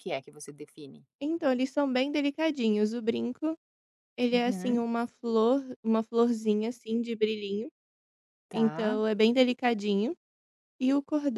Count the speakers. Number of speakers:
two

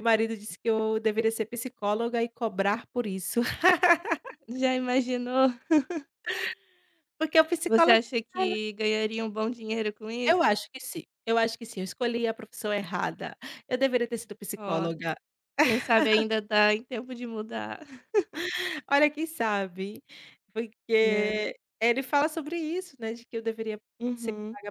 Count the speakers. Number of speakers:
two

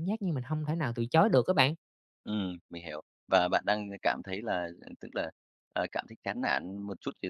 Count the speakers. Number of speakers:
two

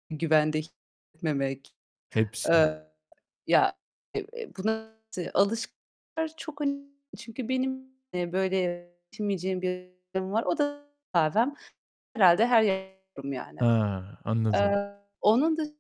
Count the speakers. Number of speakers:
two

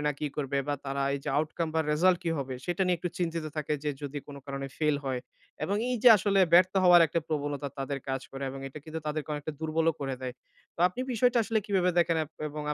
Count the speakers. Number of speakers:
one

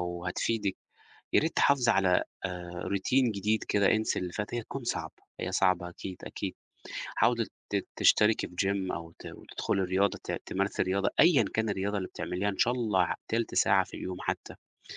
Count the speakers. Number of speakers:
one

